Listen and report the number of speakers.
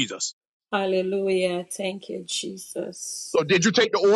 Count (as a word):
two